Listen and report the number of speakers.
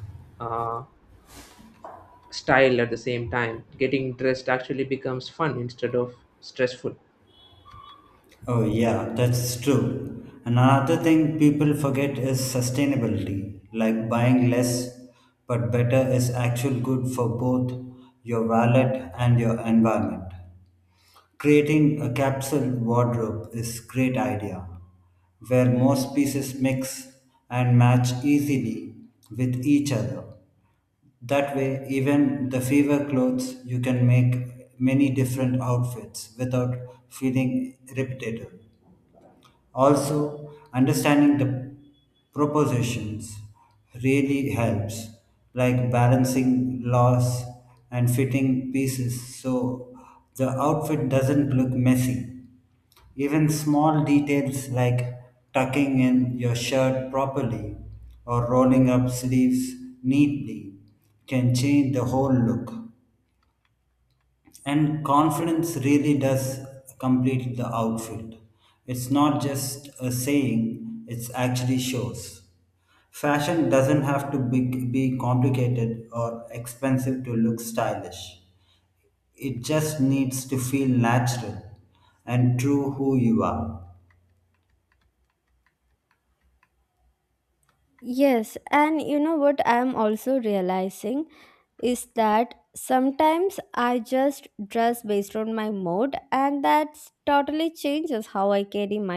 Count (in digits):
3